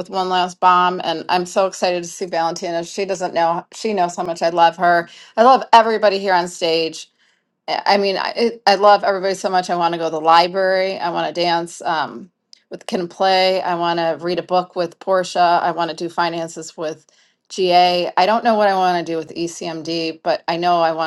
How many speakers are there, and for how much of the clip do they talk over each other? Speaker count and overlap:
1, no overlap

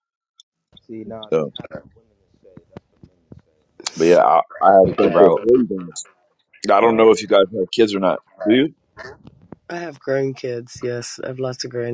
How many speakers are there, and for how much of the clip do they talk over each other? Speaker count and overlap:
3, about 6%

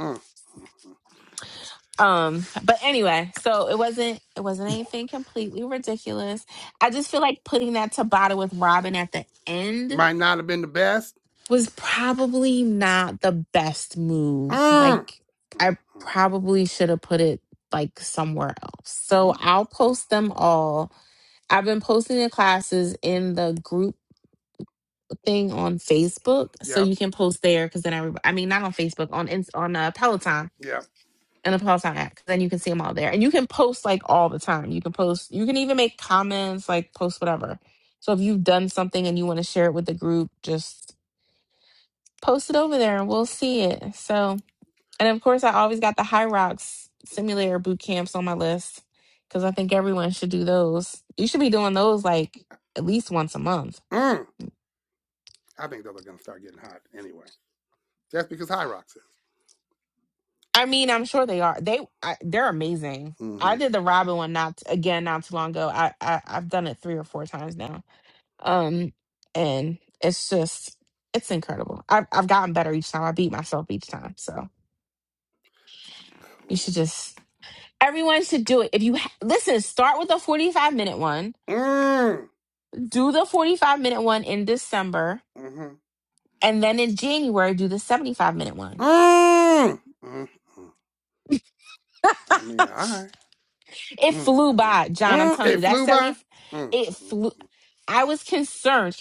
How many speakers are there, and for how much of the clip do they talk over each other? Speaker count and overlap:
2, about 4%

